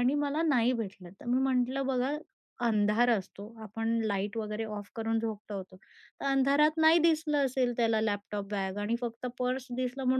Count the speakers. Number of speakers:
1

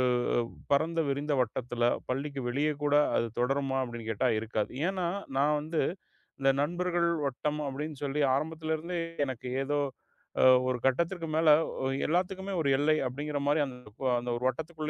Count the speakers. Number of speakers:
1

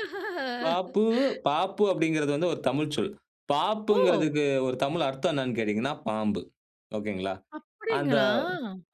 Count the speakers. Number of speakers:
2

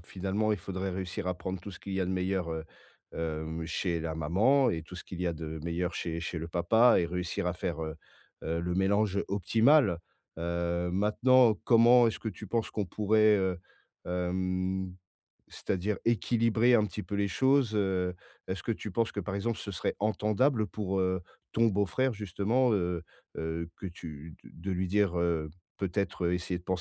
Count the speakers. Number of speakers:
1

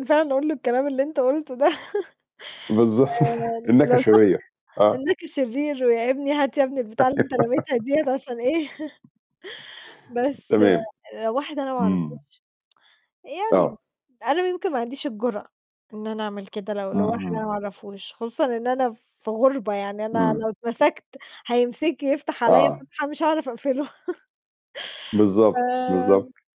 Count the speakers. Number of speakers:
2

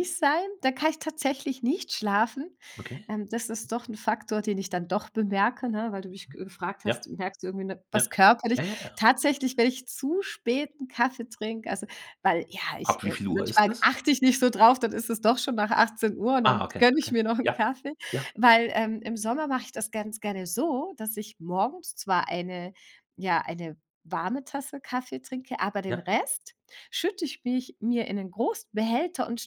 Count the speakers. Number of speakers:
2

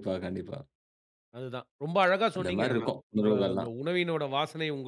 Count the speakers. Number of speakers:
2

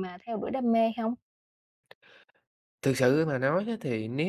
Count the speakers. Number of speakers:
2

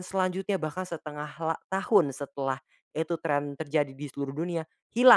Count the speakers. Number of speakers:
1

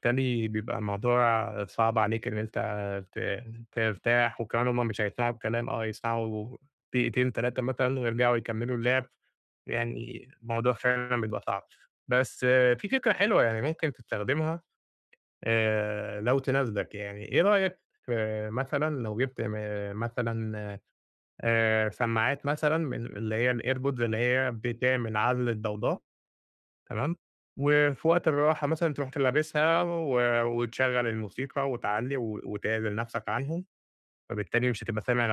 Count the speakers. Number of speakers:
1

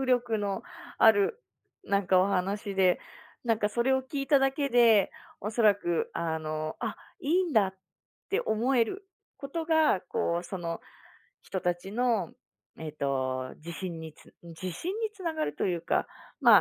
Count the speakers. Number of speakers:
1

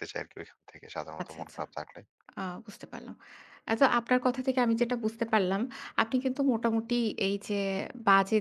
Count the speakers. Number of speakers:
2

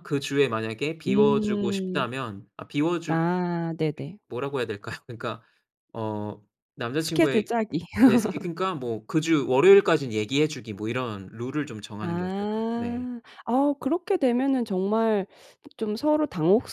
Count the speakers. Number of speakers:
2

